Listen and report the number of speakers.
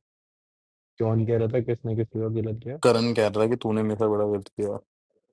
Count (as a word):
two